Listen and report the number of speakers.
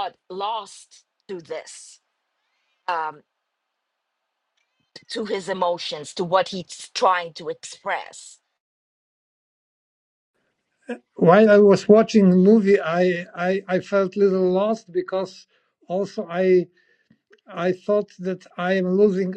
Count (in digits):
2